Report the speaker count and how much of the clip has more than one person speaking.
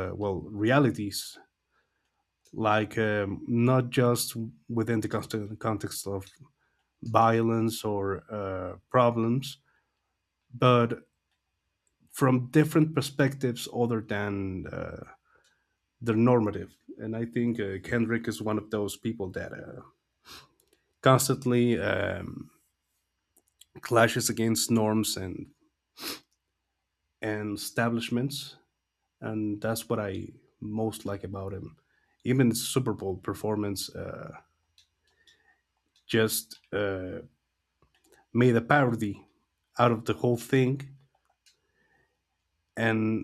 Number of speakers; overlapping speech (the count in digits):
1, no overlap